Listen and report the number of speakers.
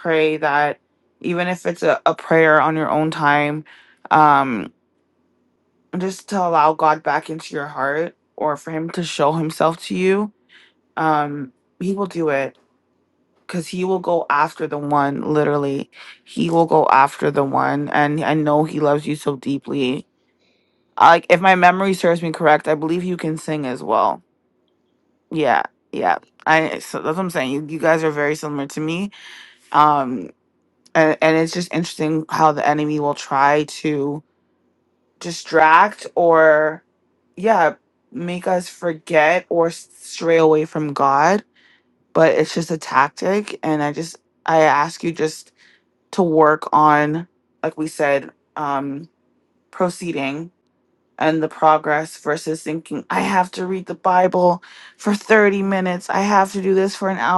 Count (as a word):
one